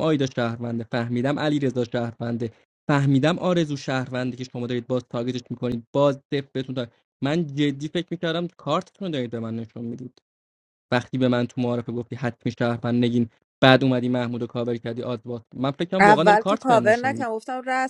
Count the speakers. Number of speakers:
2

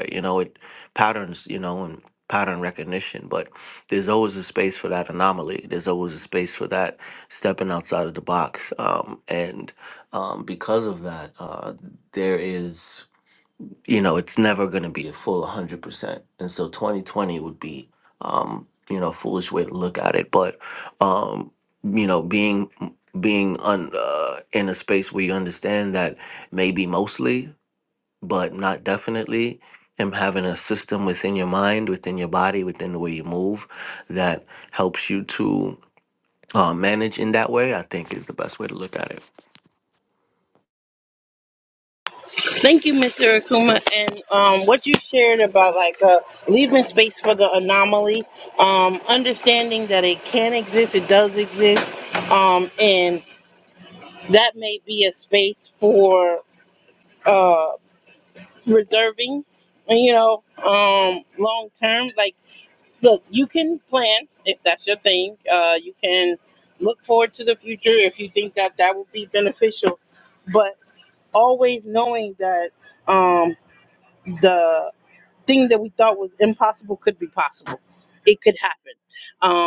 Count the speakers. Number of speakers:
2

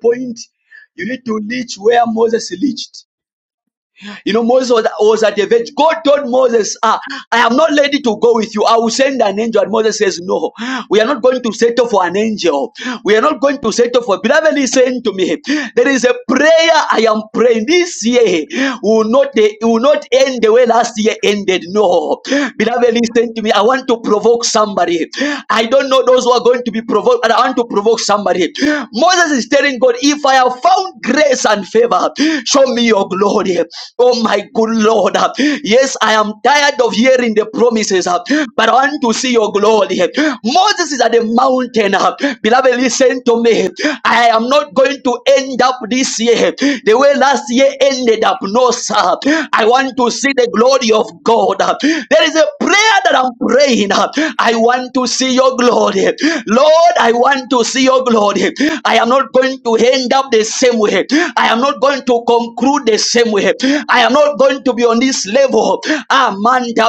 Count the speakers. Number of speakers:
1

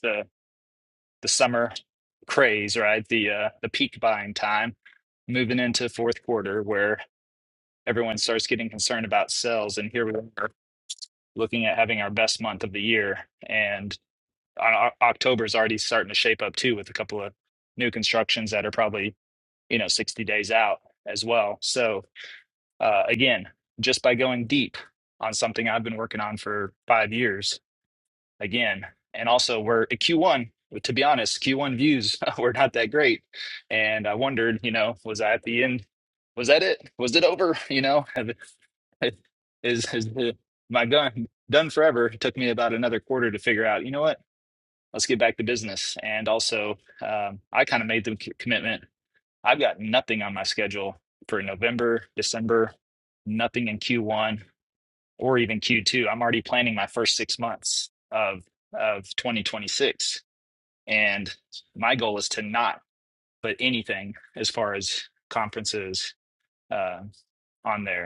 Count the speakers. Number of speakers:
1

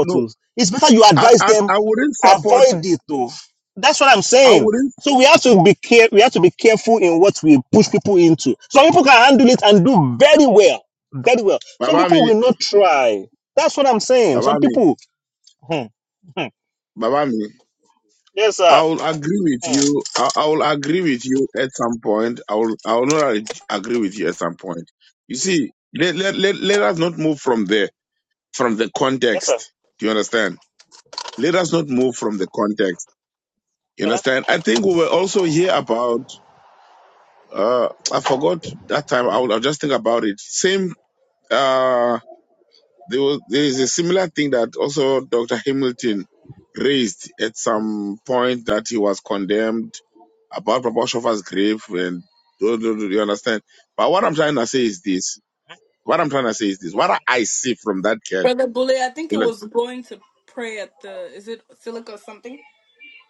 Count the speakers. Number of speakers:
3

